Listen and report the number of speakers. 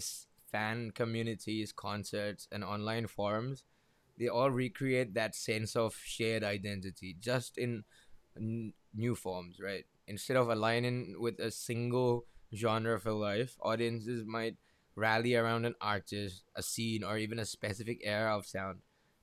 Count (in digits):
1